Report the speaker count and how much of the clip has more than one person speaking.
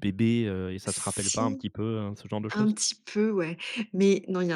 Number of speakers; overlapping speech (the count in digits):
2, about 21%